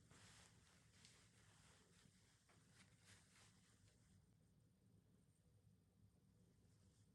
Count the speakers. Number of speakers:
0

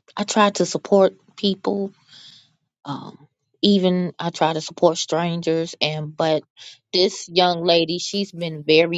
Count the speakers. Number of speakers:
1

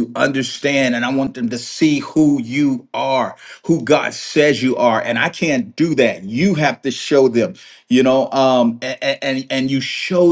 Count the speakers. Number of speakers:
1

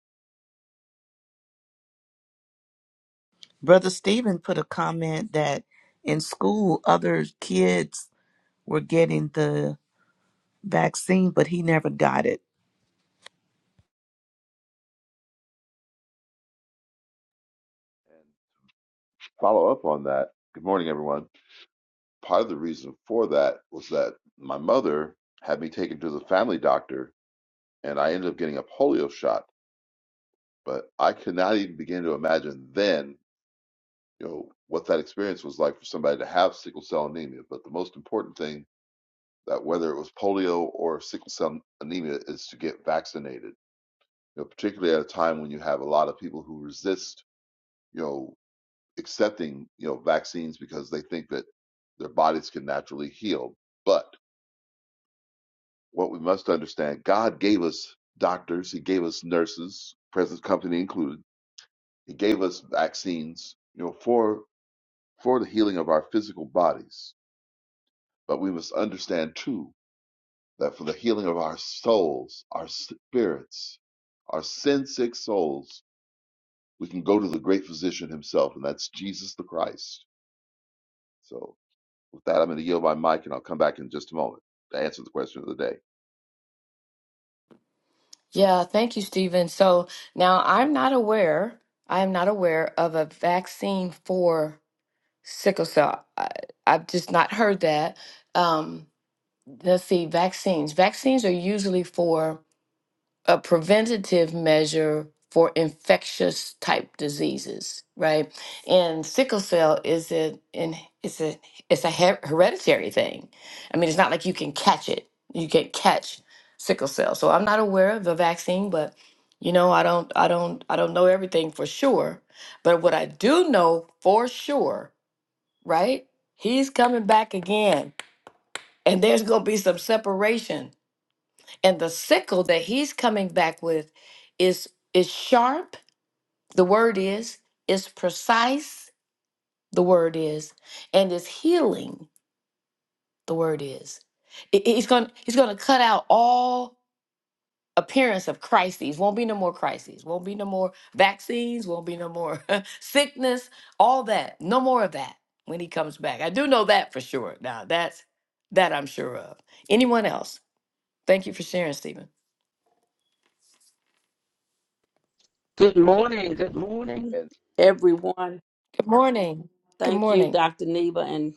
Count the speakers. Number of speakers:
4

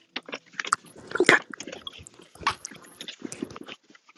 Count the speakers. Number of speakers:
0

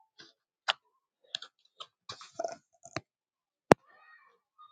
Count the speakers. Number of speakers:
0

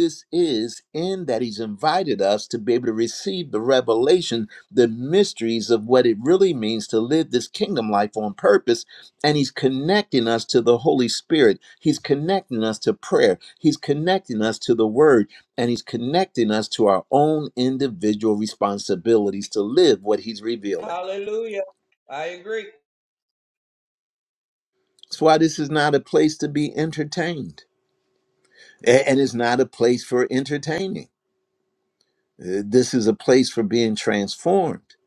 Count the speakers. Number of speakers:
2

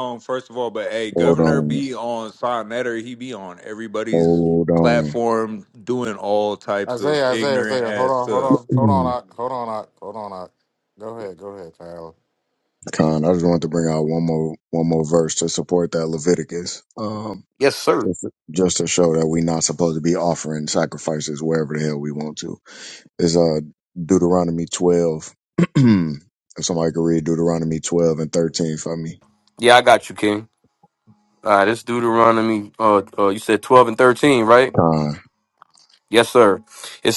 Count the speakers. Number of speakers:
4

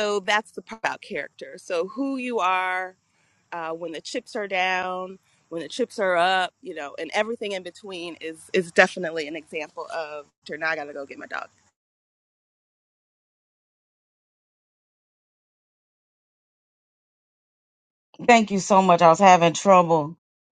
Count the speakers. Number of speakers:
2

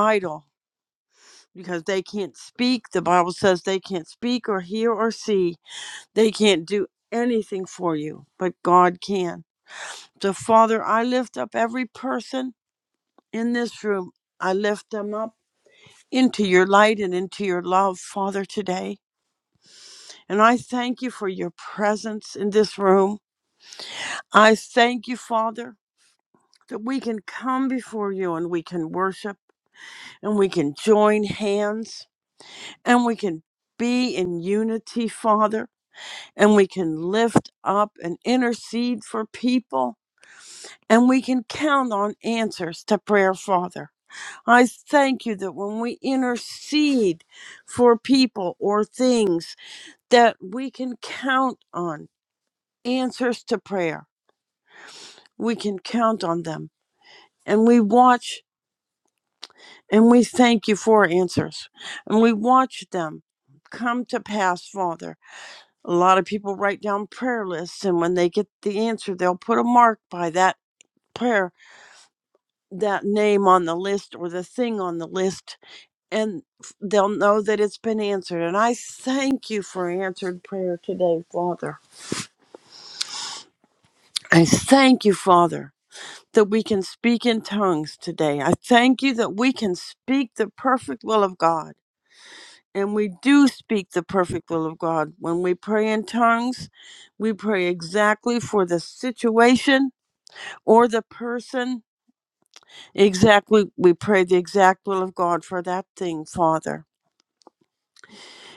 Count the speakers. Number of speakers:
1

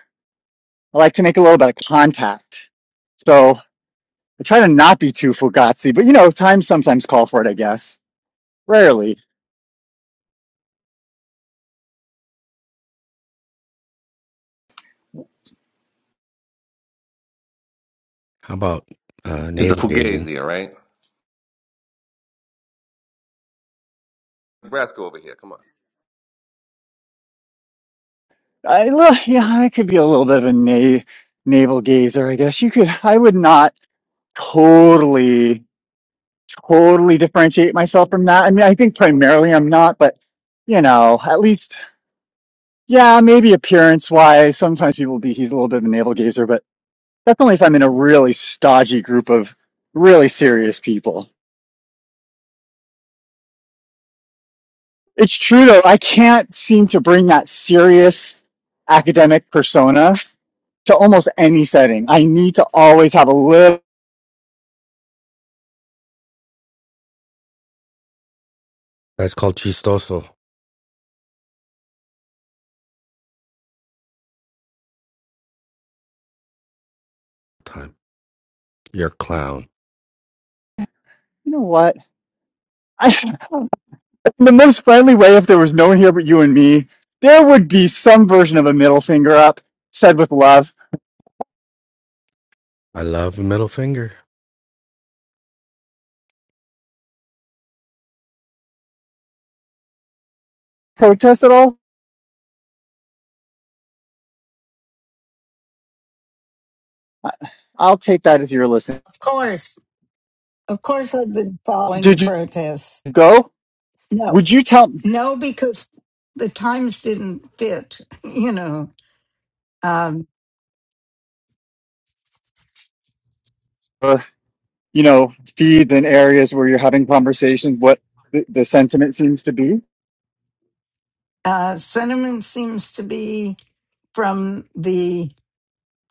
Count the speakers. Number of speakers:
4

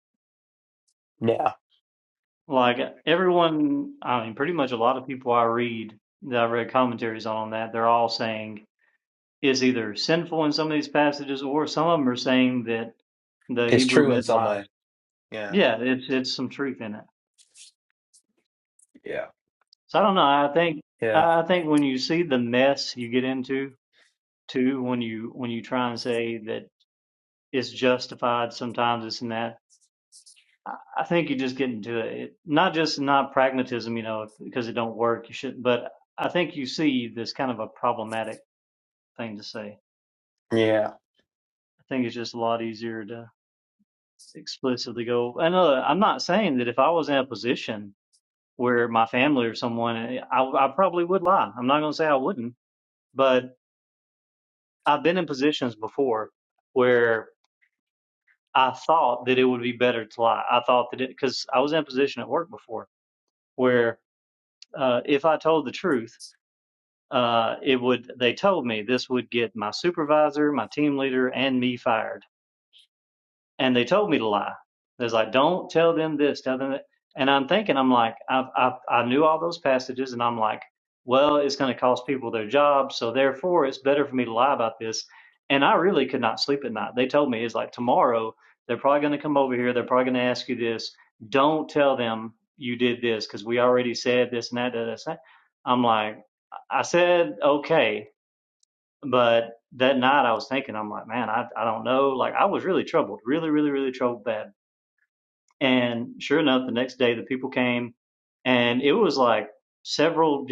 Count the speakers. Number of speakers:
2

